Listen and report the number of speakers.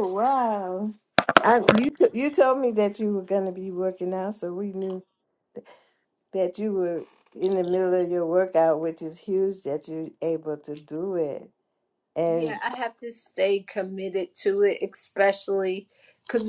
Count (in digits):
2